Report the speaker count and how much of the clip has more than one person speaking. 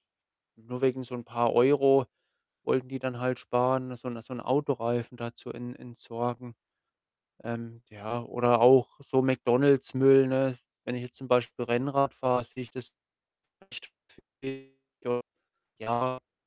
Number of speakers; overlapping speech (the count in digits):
1, no overlap